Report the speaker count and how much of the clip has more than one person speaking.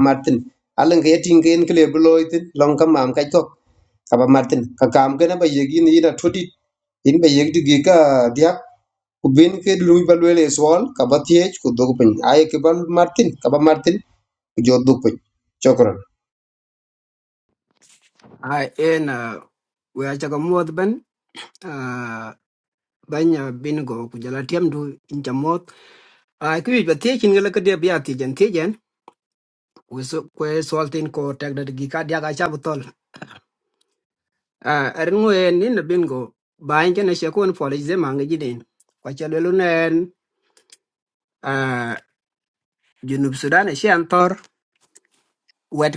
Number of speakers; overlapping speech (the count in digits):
2, no overlap